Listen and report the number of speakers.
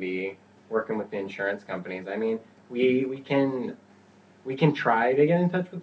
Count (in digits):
1